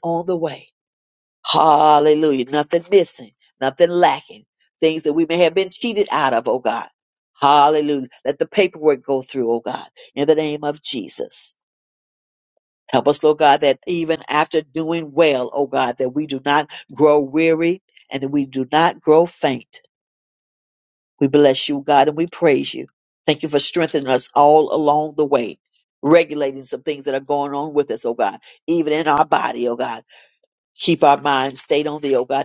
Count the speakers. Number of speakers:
1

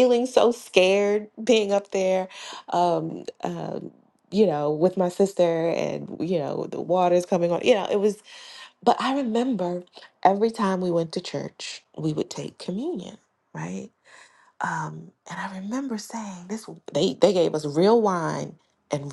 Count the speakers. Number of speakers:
1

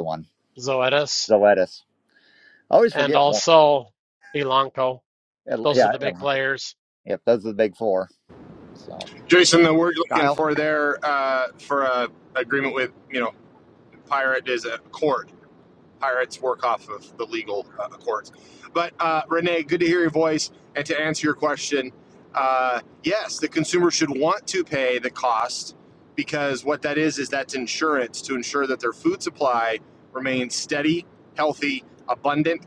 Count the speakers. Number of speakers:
3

